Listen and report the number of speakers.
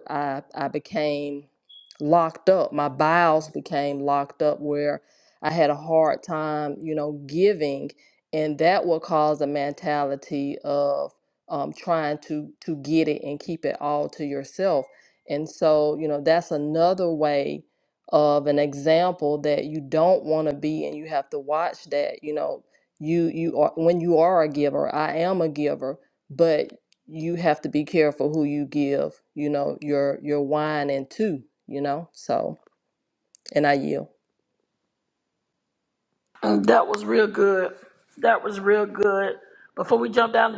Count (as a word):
two